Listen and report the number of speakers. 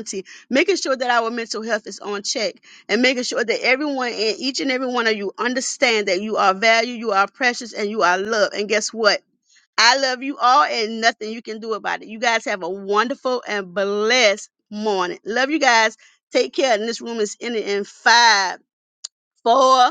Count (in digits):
1